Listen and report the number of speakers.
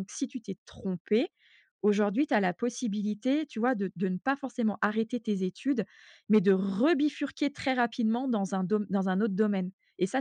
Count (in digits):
1